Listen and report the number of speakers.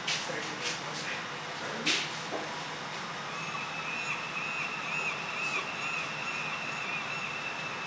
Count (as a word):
zero